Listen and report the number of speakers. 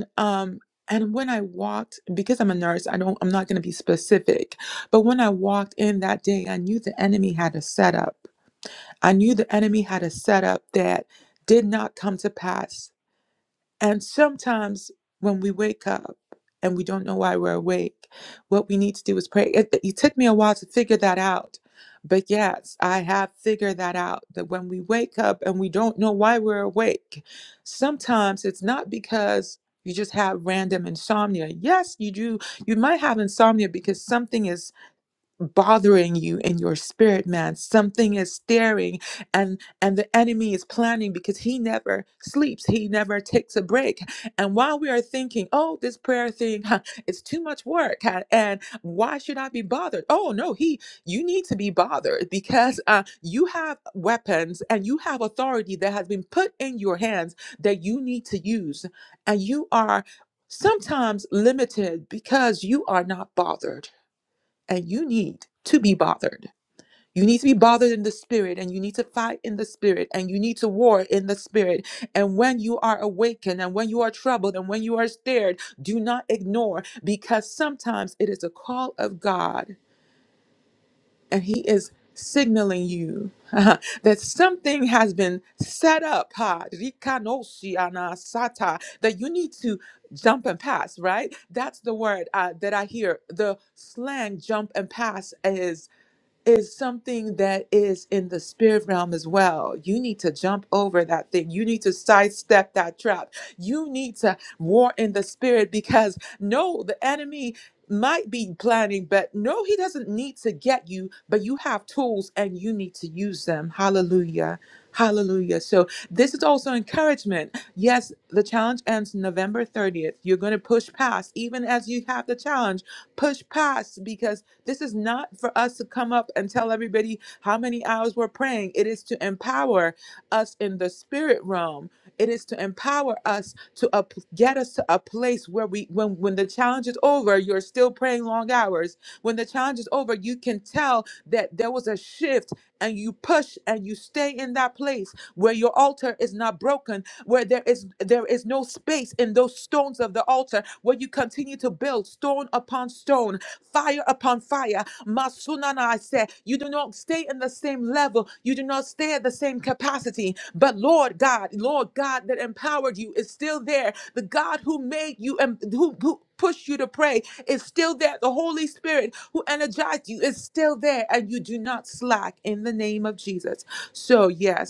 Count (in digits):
1